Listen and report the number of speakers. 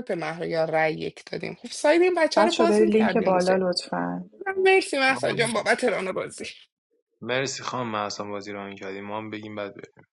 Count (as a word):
three